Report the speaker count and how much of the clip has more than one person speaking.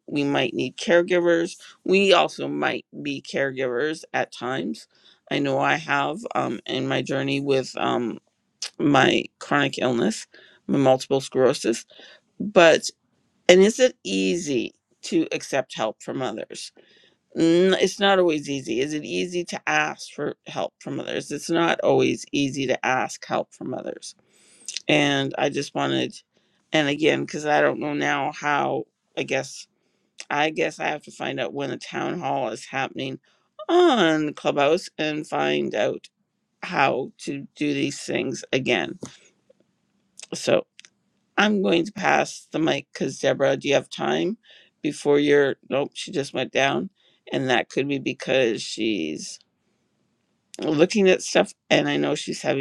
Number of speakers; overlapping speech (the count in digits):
1, no overlap